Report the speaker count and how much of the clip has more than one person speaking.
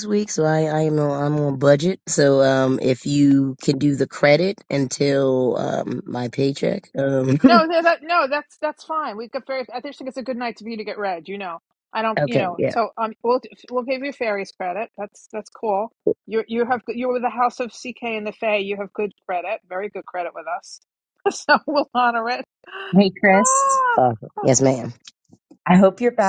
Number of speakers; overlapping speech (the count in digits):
3, about 4%